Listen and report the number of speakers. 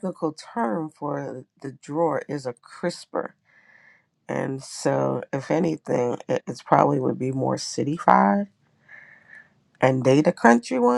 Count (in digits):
1